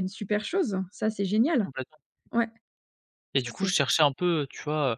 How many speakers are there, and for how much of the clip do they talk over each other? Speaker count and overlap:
2, about 5%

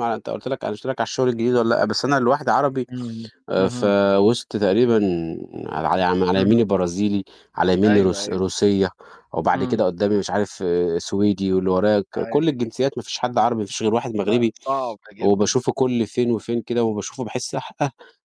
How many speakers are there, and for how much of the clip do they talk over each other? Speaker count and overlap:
2, about 14%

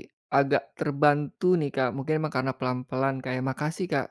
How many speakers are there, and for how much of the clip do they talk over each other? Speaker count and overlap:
1, no overlap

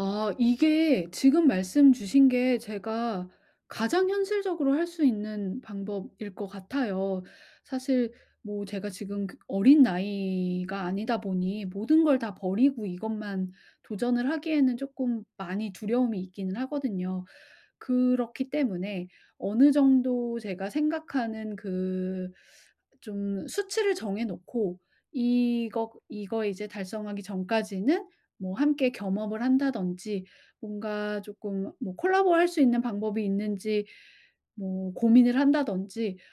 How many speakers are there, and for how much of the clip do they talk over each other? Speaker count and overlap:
1, no overlap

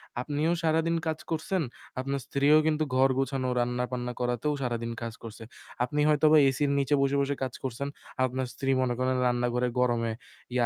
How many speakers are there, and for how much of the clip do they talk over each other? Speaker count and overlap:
1, no overlap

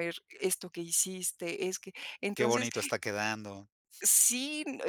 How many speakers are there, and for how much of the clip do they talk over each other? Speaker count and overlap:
2, about 8%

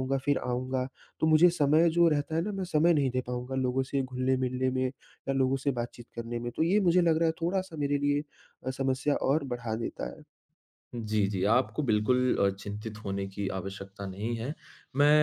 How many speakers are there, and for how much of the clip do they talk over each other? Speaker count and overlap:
2, no overlap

